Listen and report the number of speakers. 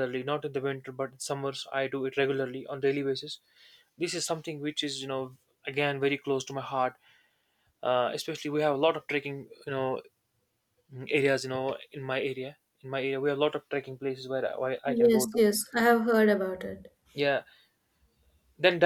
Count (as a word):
two